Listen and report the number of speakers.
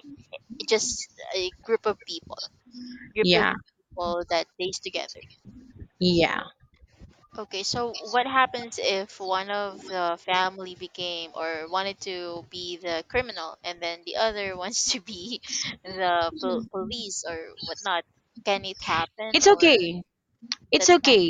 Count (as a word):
two